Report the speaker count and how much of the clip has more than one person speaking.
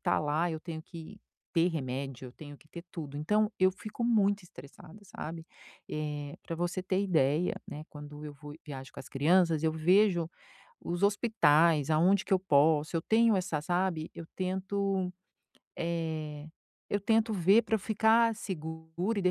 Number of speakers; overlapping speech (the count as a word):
one, no overlap